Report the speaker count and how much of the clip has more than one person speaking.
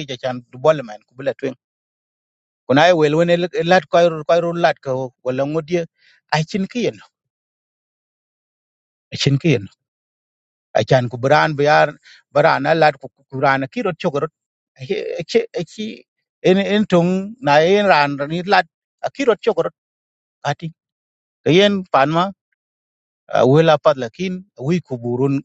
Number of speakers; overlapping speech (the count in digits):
1, no overlap